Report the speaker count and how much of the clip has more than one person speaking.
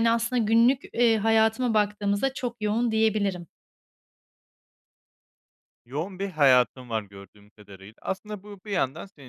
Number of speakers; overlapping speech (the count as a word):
two, no overlap